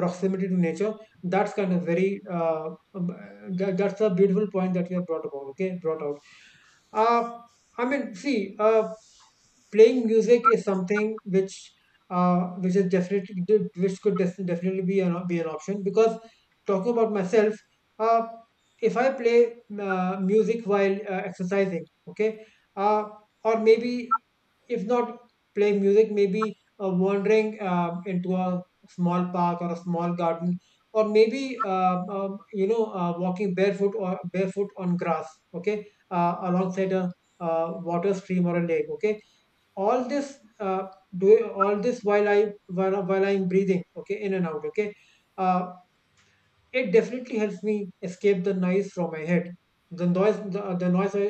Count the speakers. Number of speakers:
1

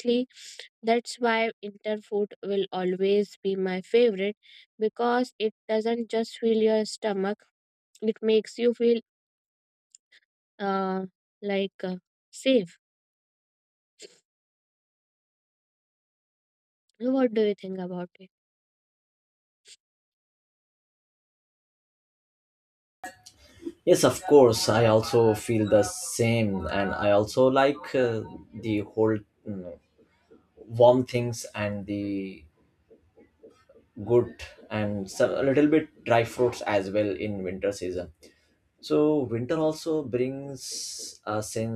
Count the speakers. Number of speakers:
2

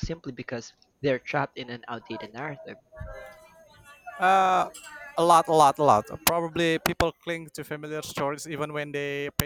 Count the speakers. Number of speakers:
2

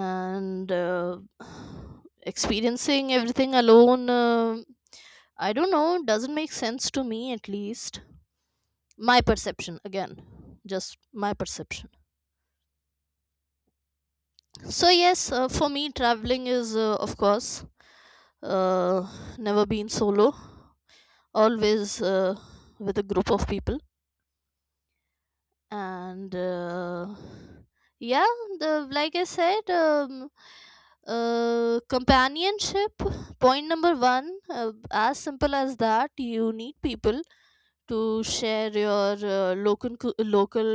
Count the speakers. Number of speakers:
1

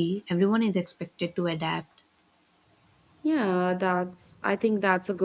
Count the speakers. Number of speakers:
2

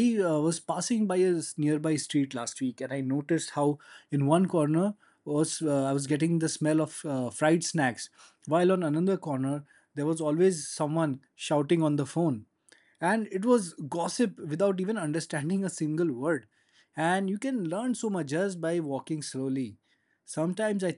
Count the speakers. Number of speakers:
1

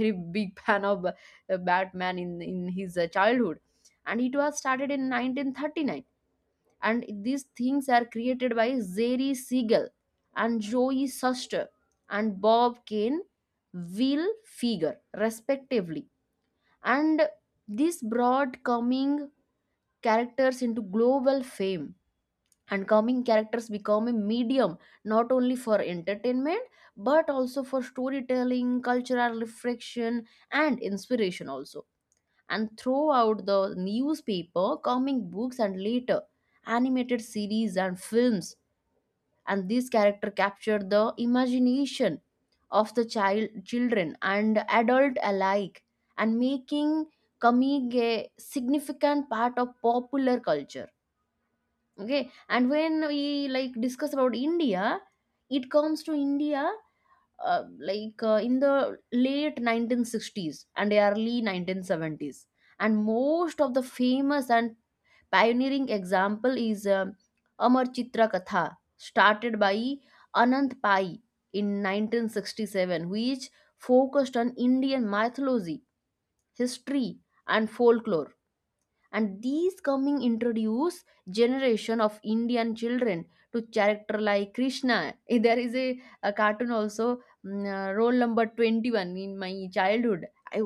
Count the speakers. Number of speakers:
1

